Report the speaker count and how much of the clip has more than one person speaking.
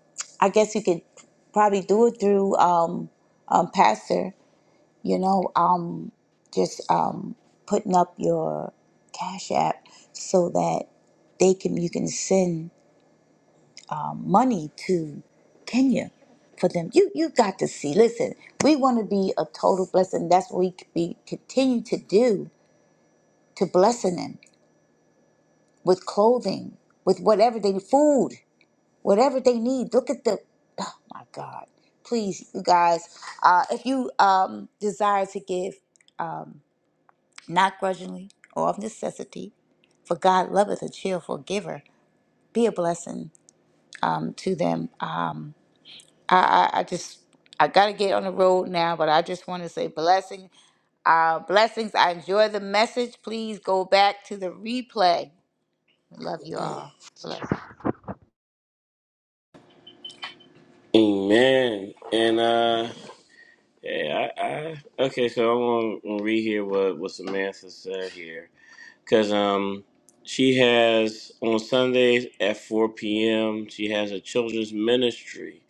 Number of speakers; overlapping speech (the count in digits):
2, no overlap